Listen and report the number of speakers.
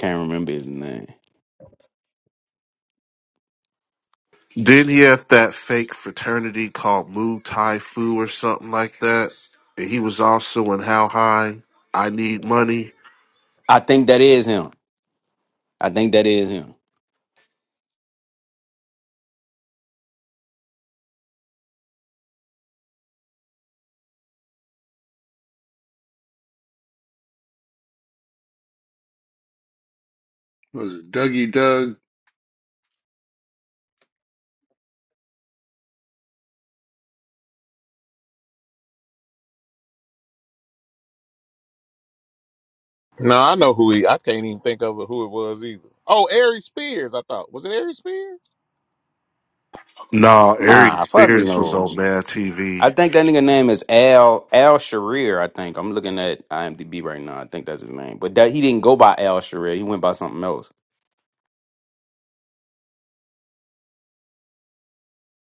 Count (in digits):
4